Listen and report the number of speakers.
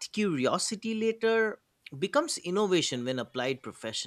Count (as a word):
one